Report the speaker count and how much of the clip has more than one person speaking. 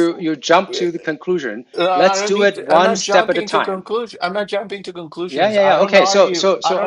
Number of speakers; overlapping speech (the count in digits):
2, about 55%